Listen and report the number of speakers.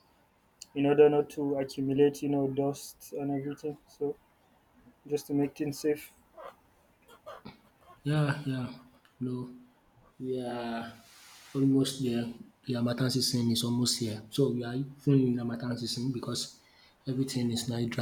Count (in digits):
2